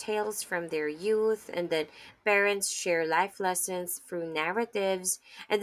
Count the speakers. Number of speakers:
one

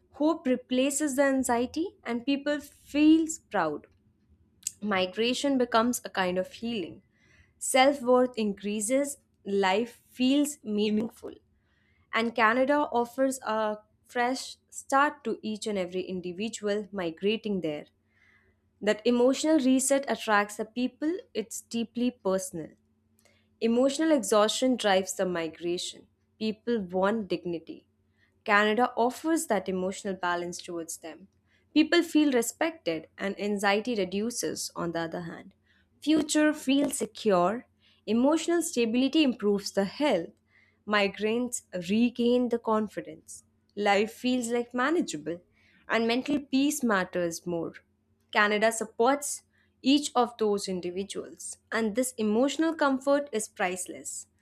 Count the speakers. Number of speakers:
one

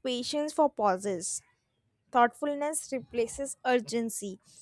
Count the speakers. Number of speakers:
one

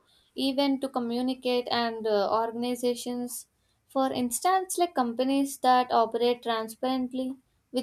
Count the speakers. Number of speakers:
one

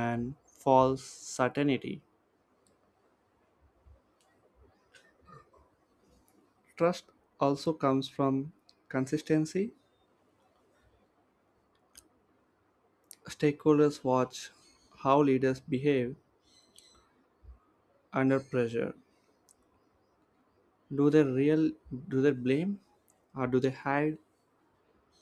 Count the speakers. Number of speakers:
one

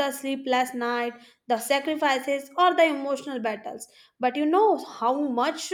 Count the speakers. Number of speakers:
one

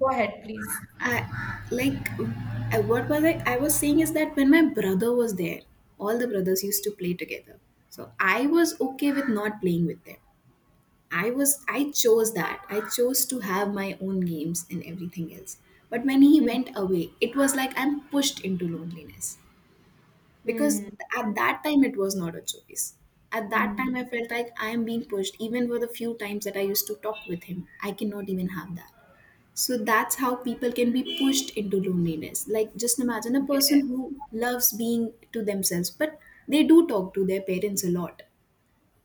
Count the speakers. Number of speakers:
two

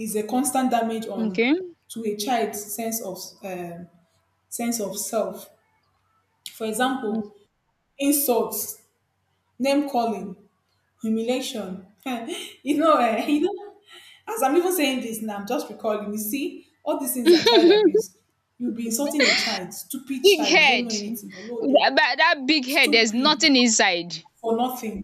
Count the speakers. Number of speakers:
two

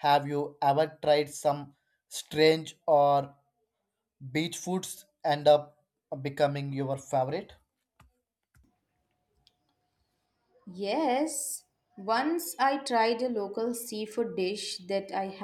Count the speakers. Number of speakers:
two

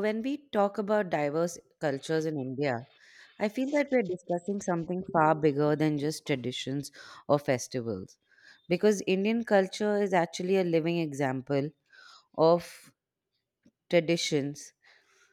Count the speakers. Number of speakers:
one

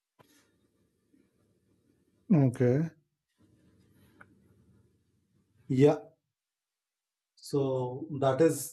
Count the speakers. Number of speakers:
one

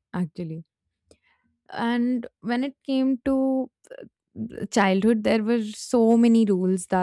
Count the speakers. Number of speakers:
one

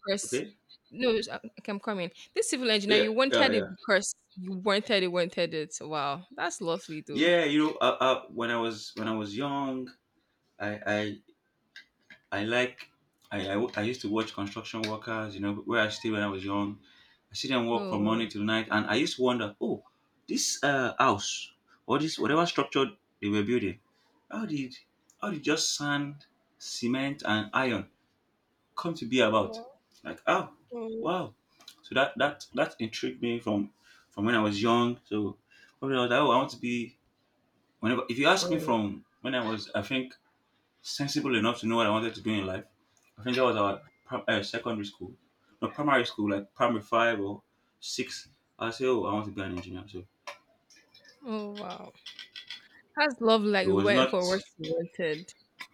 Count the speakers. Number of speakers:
two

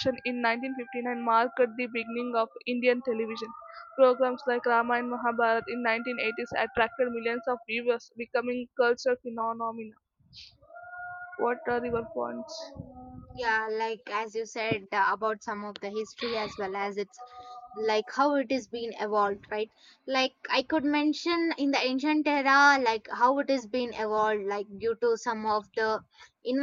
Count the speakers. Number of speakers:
two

